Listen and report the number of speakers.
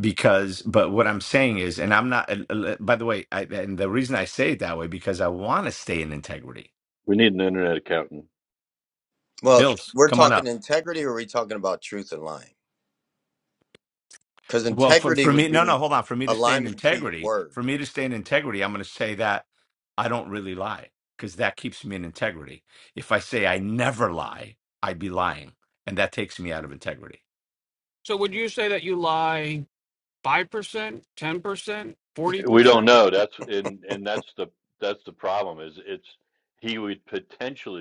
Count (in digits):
4